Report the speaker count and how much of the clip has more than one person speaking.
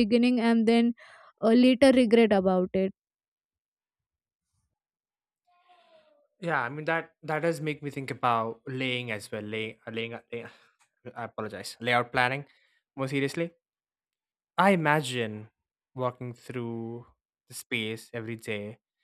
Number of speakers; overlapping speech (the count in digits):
2, no overlap